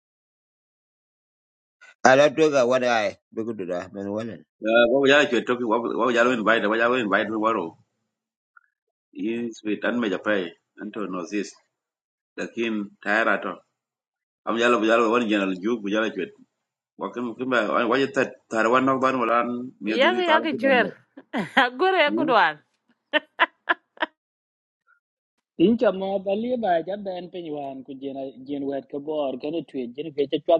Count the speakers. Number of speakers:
four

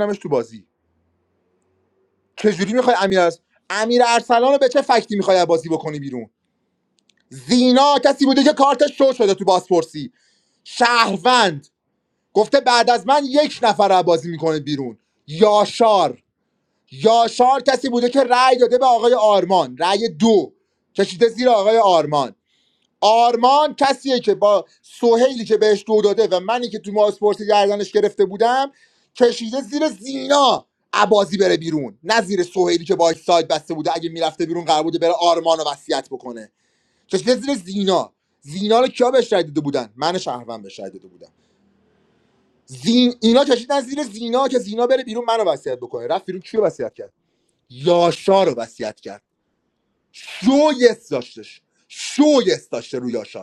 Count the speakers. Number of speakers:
one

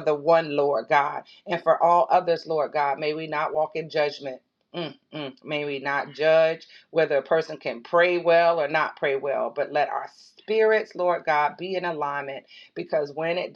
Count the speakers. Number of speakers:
one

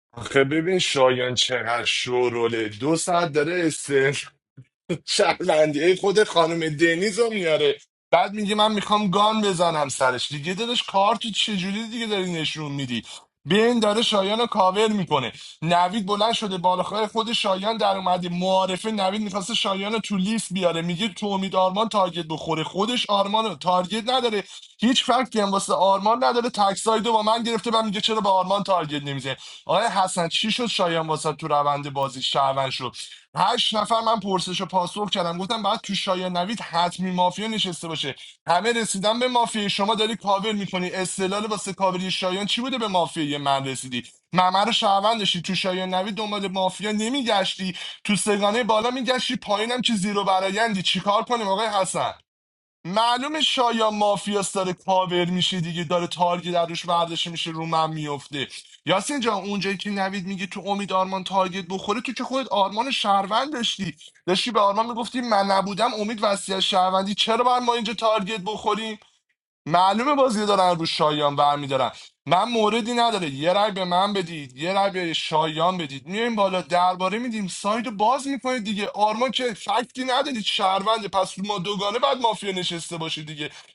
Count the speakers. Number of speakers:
one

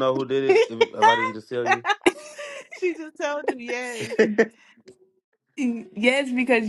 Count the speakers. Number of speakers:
three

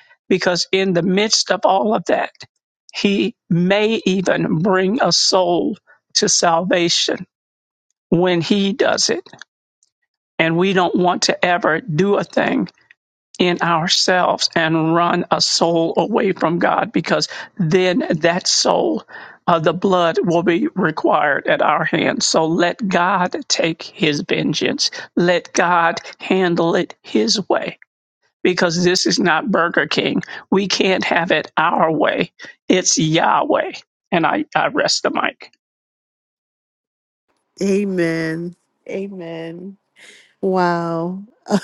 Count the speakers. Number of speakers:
two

